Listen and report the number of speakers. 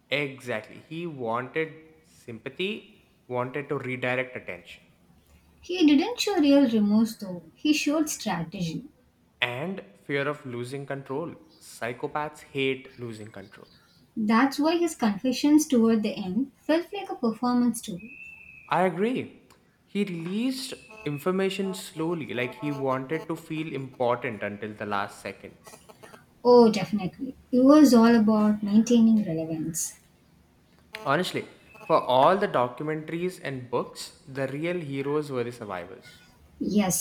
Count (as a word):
two